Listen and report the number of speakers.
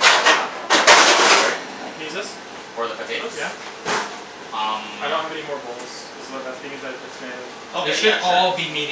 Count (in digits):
3